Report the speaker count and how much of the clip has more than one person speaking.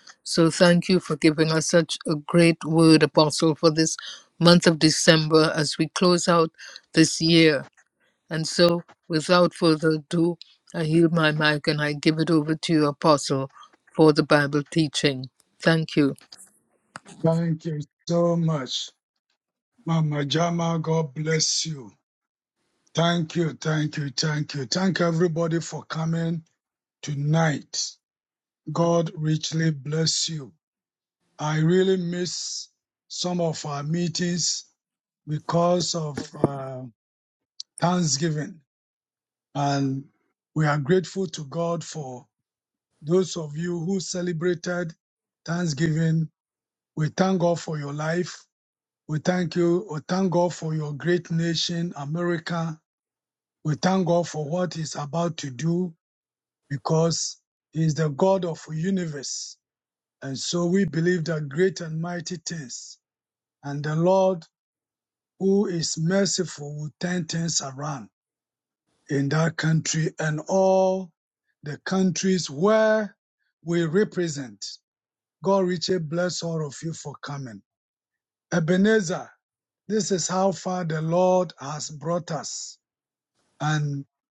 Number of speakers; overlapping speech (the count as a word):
two, no overlap